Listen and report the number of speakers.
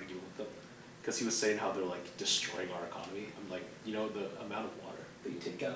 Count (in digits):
1